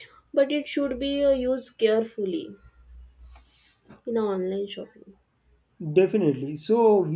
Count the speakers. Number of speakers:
two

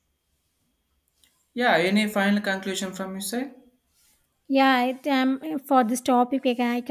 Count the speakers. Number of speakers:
two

